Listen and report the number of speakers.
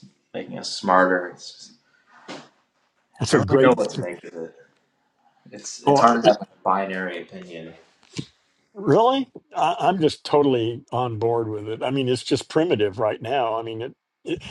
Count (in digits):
2